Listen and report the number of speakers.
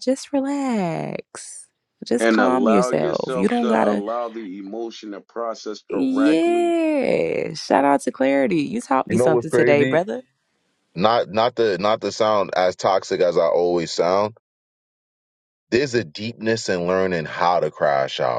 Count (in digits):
3